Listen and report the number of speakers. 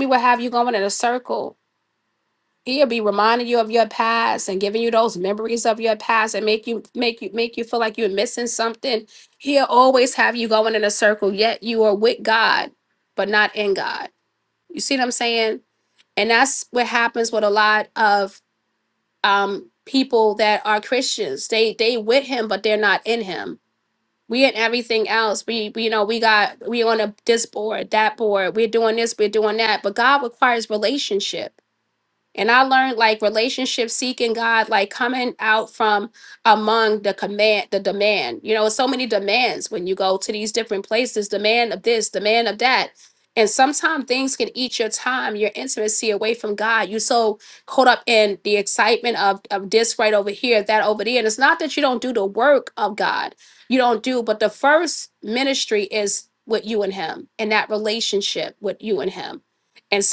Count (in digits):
1